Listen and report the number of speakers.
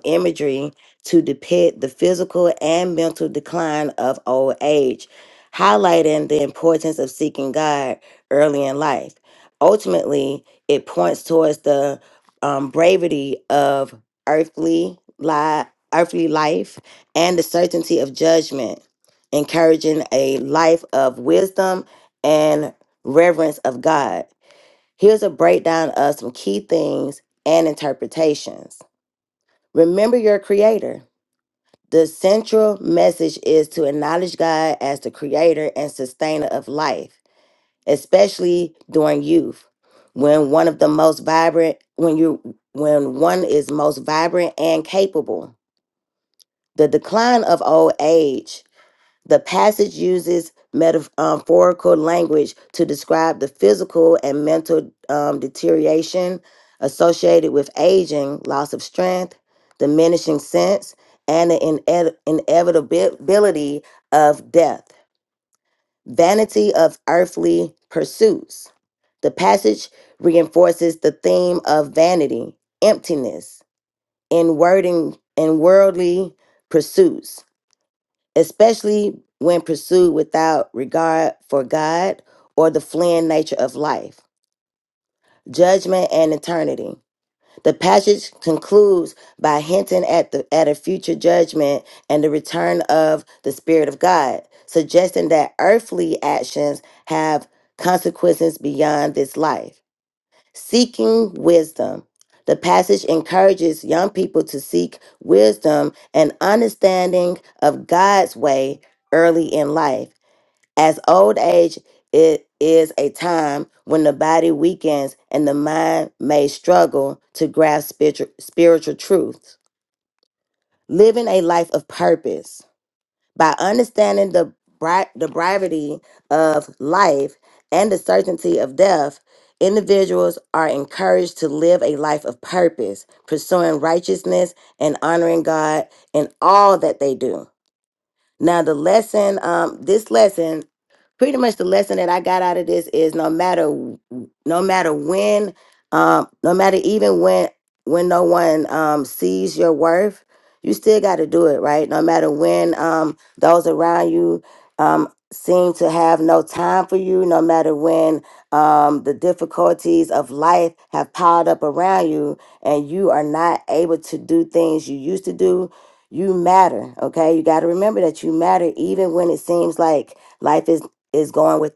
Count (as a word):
one